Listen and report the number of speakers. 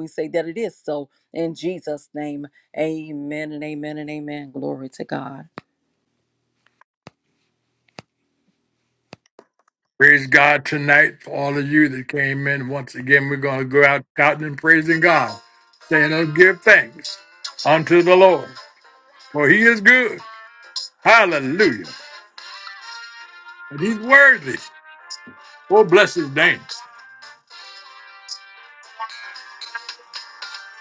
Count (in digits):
2